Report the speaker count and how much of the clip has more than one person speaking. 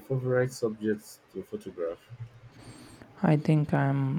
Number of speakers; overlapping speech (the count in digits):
2, no overlap